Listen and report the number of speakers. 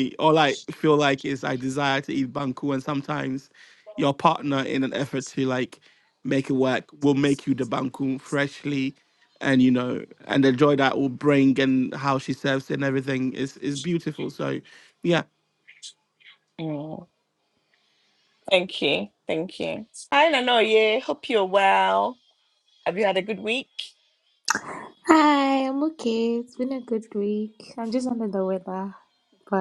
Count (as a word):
three